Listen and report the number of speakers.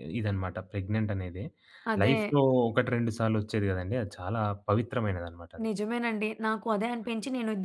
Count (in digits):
2